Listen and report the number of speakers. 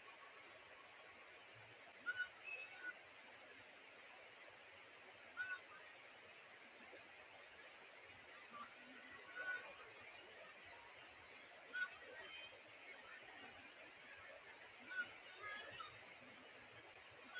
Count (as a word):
zero